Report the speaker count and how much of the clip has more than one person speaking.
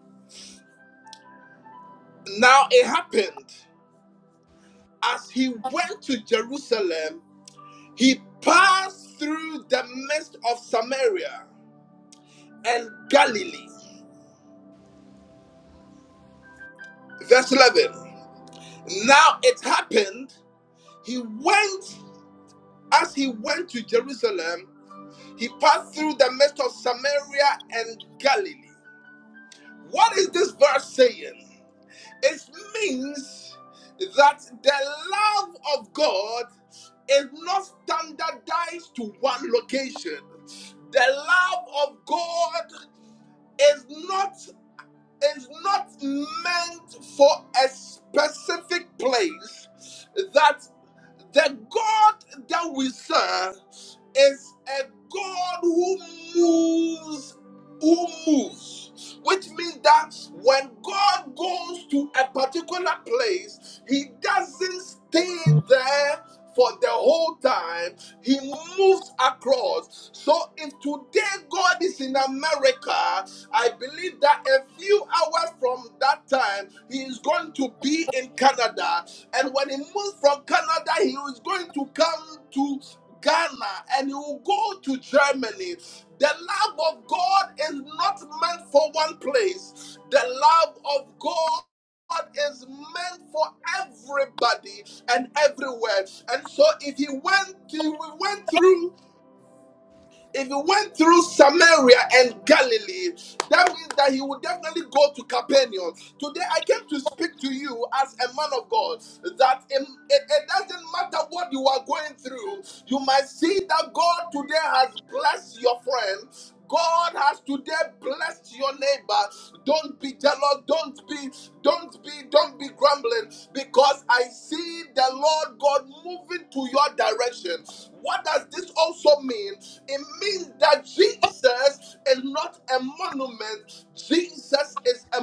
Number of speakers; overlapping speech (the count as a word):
one, no overlap